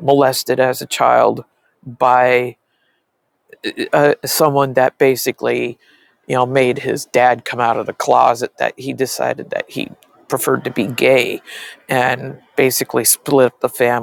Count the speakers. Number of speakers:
one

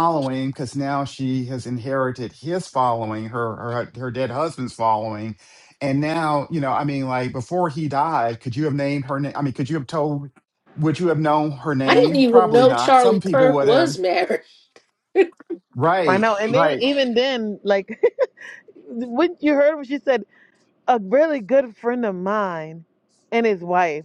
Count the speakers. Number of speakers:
three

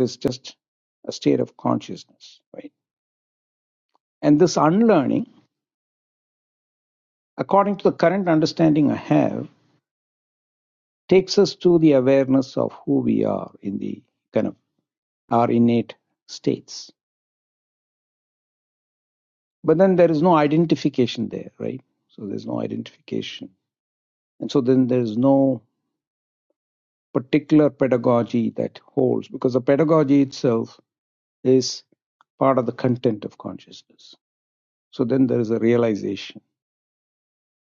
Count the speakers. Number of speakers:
one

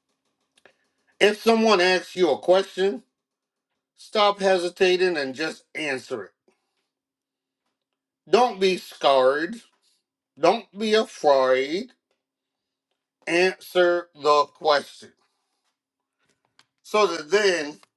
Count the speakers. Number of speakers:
one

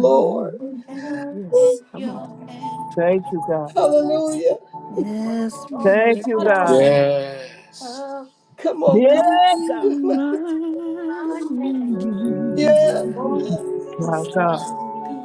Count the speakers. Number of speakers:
five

